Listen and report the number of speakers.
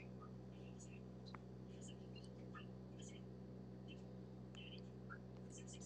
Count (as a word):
zero